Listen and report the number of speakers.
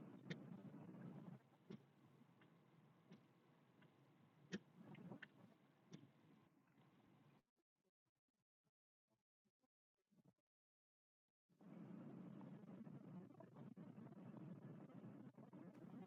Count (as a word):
zero